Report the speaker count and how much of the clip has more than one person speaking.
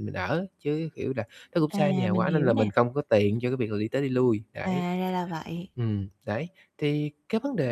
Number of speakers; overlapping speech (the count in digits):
2, about 16%